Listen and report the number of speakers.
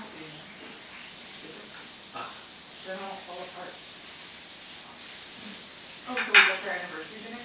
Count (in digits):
1